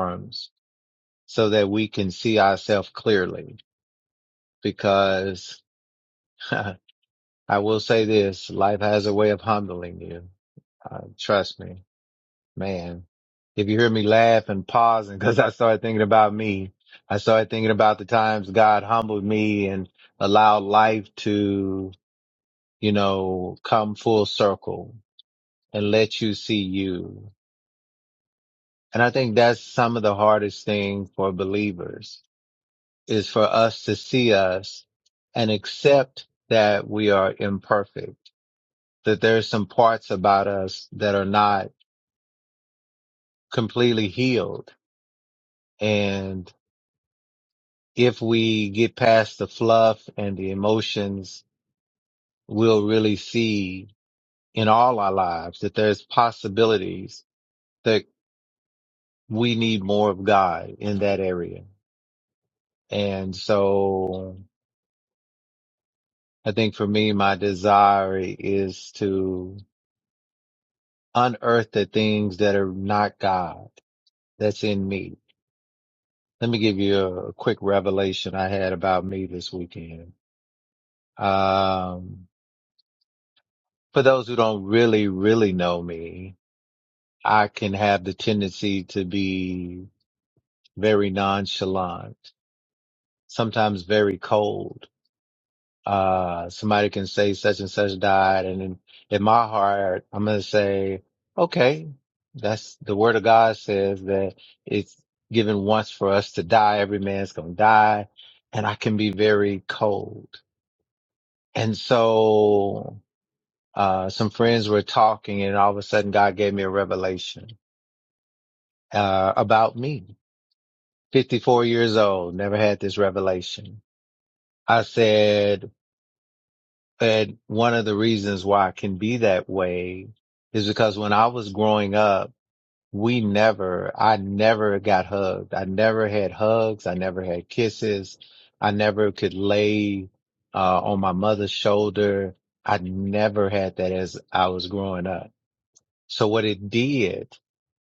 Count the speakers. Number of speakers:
one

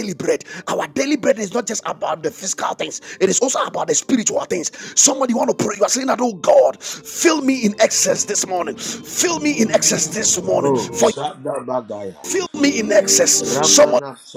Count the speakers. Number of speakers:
two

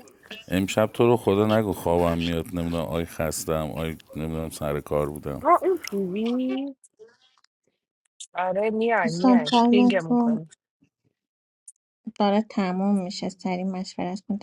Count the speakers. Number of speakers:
three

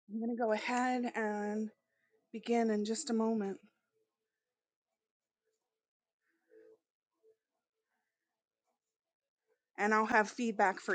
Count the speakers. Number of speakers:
one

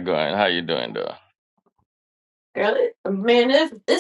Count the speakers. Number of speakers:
two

